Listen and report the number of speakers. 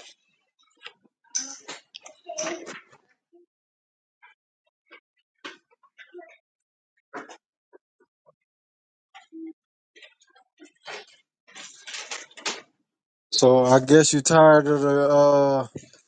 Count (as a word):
one